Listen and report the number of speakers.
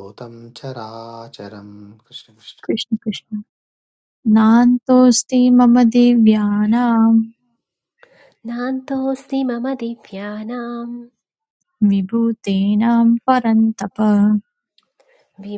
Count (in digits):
3